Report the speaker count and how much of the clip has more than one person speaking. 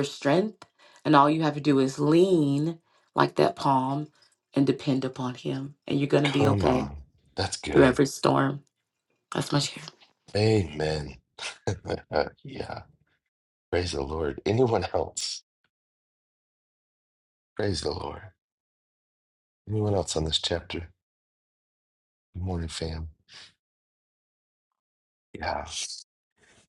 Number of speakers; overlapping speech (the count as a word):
two, about 3%